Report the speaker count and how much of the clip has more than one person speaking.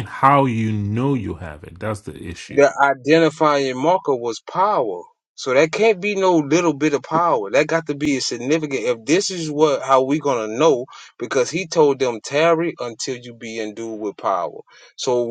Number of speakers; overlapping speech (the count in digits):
2, about 1%